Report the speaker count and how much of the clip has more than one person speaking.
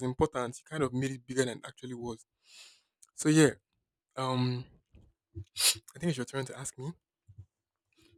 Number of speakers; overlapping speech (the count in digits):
1, no overlap